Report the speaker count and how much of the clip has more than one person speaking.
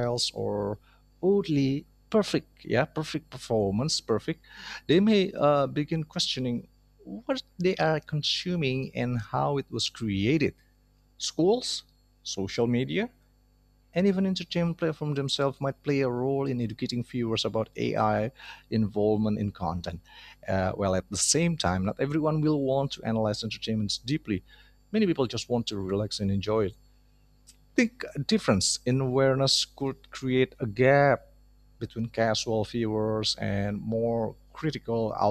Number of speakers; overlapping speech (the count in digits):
1, no overlap